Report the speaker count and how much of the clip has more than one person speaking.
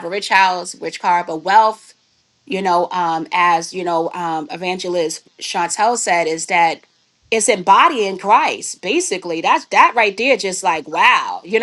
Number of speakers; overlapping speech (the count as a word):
one, no overlap